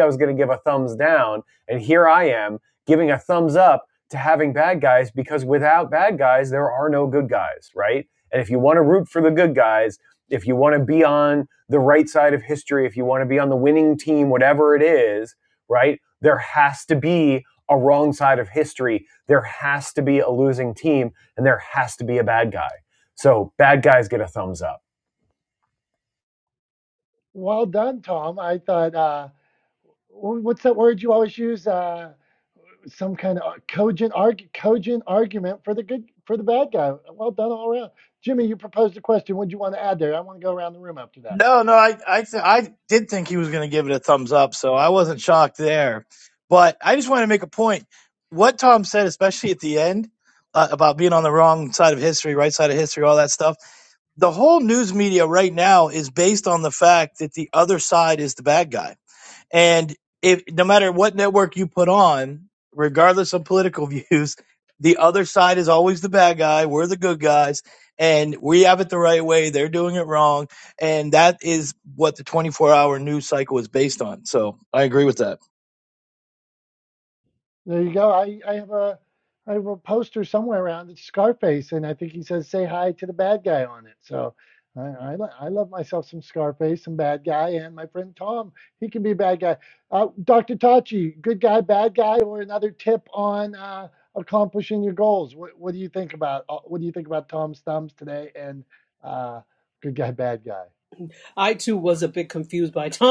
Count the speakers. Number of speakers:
4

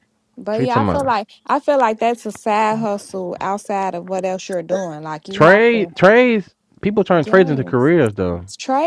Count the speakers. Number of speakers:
2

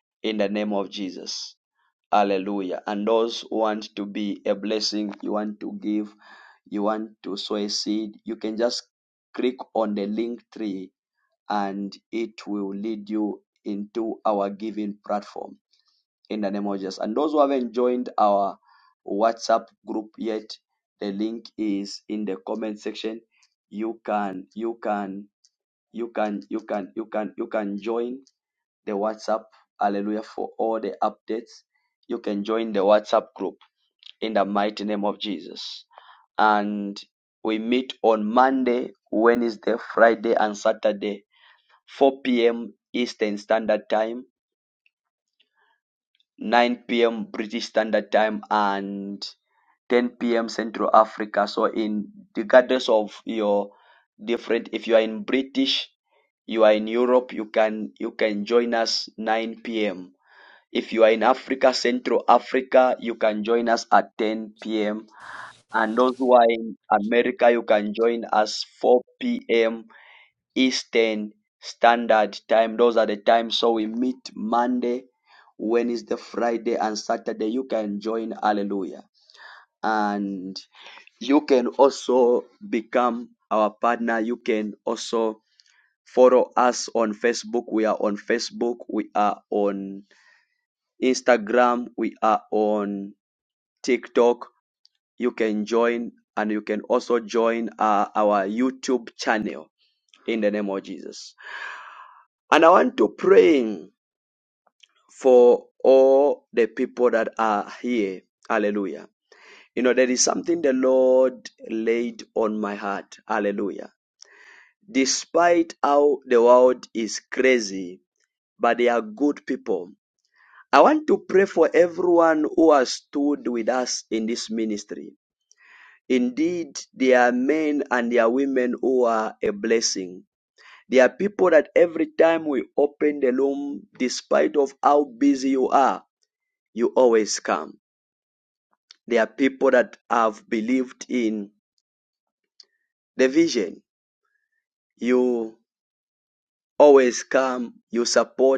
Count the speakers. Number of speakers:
1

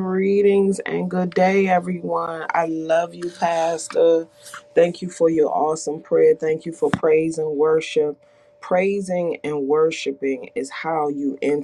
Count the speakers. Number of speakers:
1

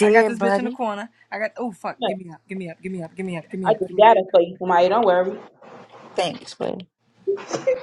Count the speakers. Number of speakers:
3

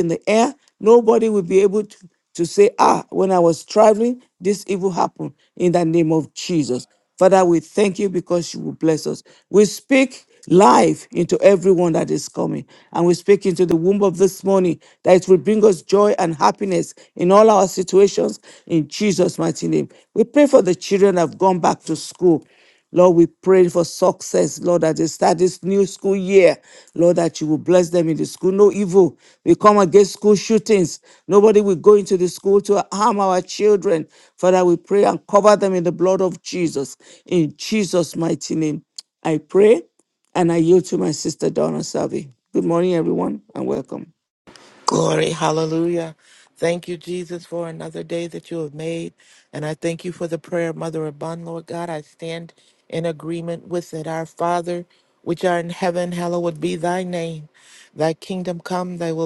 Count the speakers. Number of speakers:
2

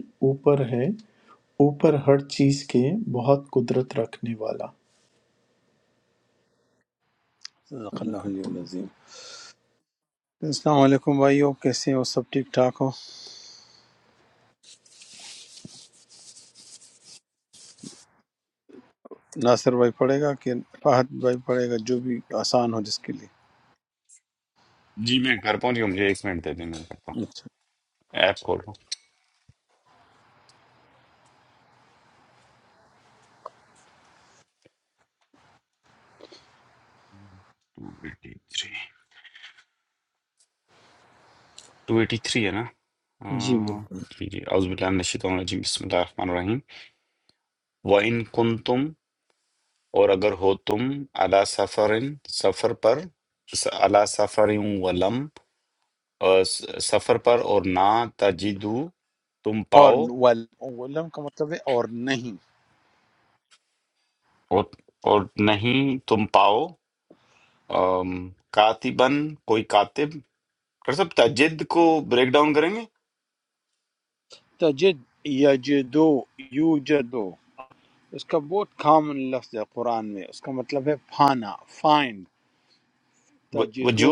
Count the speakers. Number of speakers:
3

